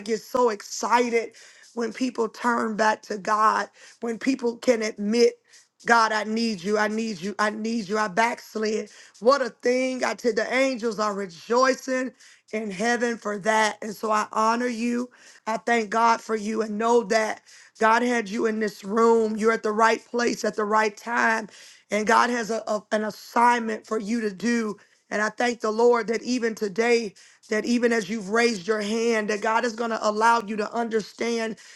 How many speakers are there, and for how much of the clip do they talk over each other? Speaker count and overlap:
1, no overlap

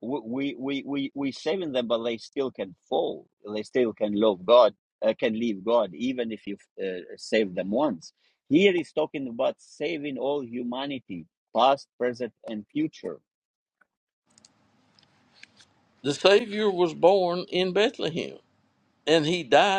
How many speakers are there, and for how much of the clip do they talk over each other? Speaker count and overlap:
2, no overlap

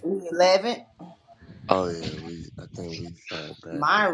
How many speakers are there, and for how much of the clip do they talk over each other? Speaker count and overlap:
2, about 11%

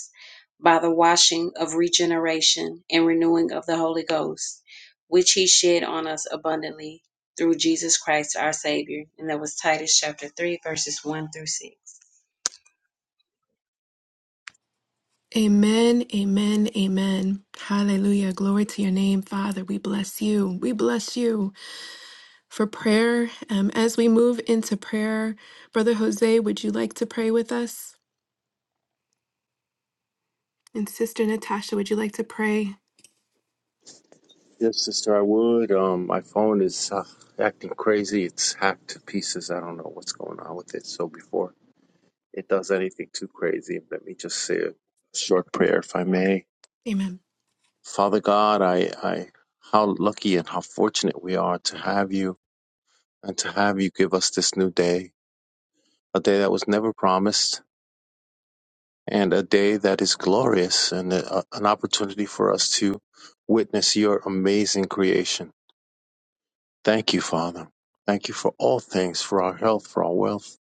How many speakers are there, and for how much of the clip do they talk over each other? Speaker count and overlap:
3, no overlap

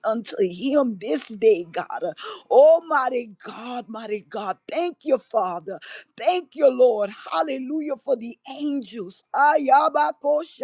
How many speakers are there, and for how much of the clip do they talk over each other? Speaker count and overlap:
1, no overlap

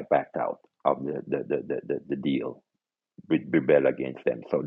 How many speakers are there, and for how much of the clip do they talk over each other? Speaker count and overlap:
1, no overlap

